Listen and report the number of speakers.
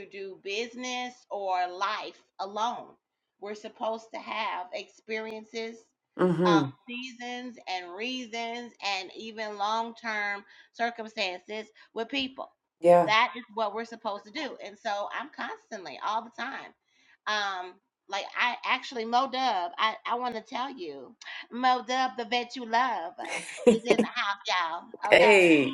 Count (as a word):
two